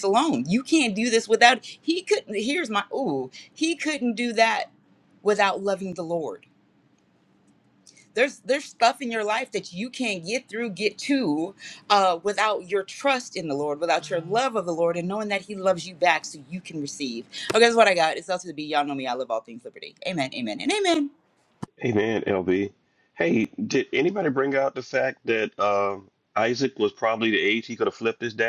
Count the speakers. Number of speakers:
two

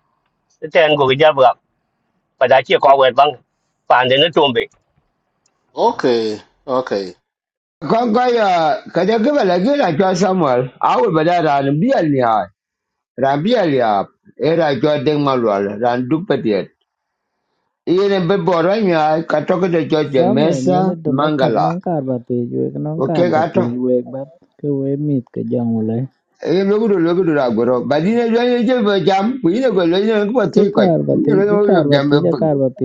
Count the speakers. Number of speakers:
four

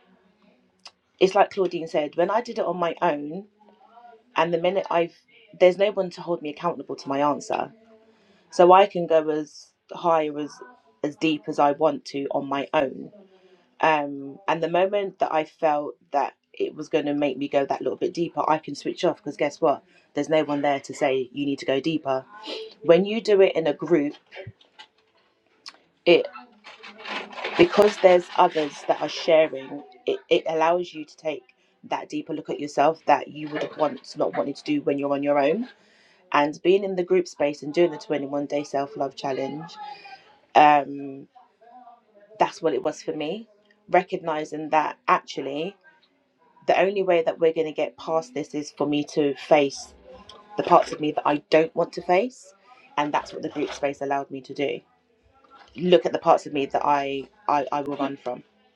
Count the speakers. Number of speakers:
one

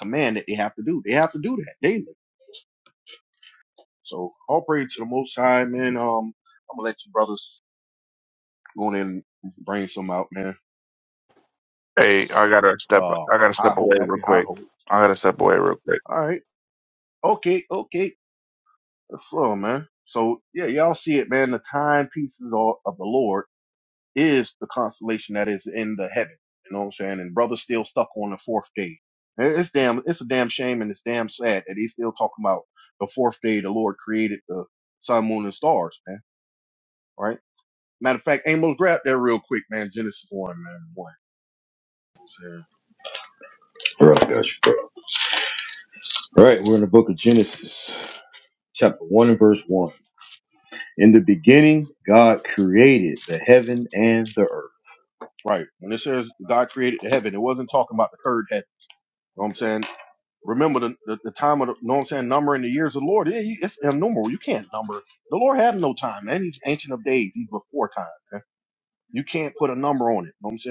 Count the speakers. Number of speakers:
three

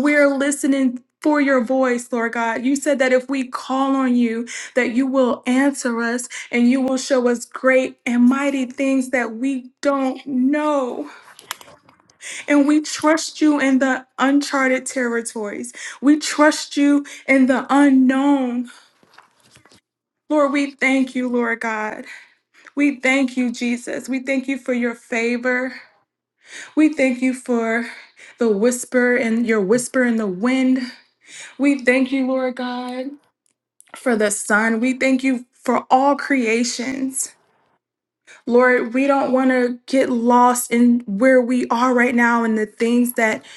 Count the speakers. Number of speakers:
one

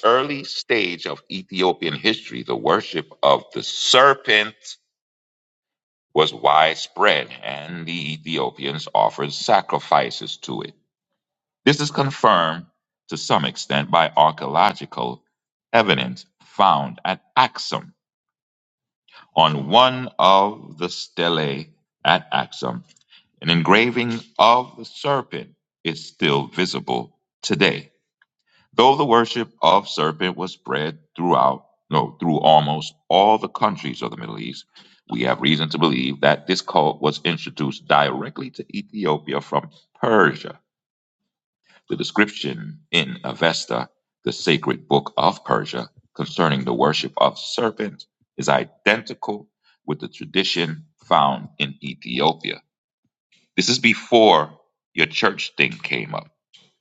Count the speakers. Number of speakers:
one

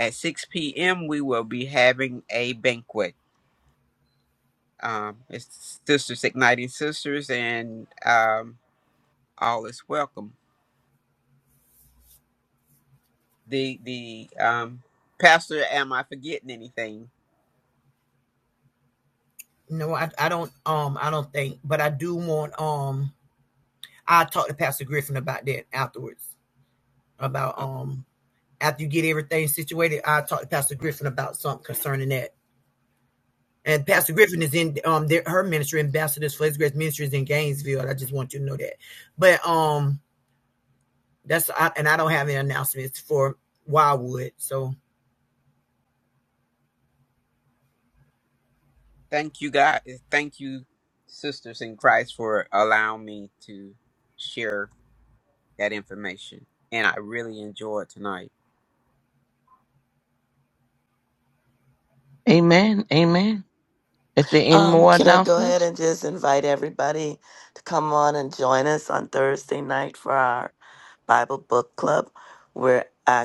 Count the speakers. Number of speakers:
four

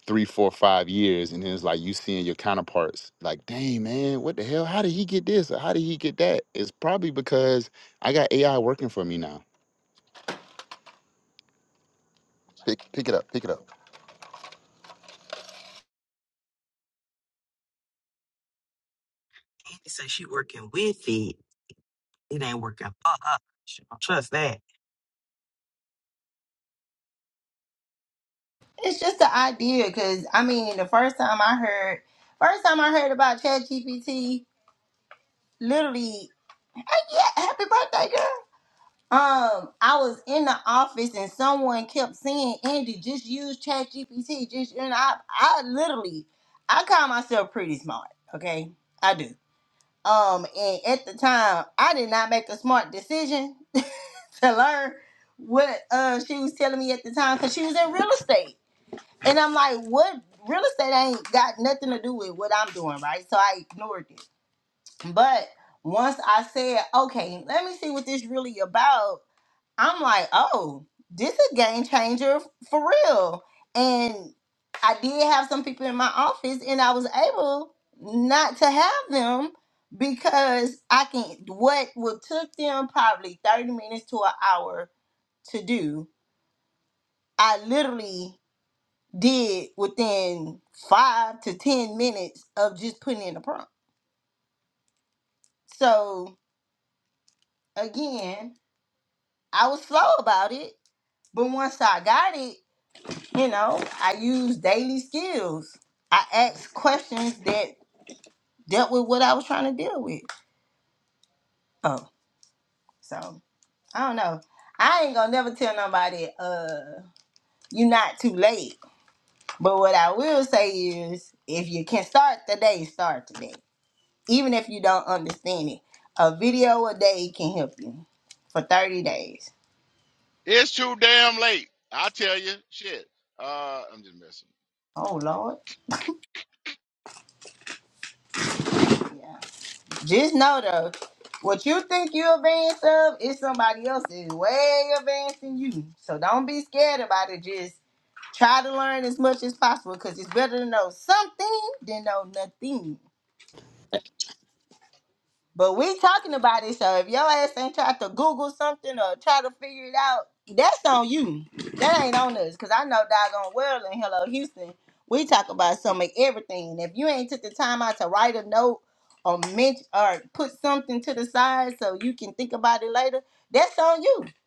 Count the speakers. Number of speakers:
four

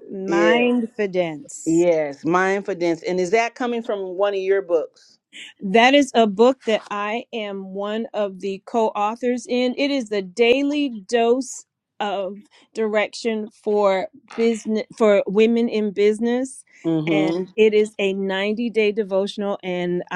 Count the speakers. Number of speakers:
two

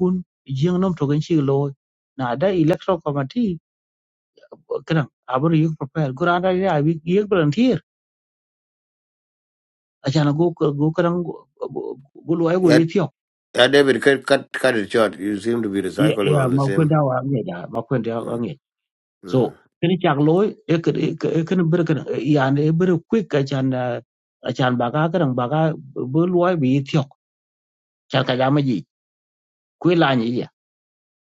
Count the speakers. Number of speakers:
two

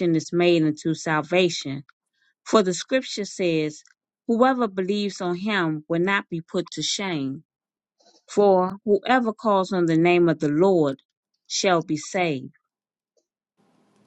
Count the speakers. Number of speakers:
one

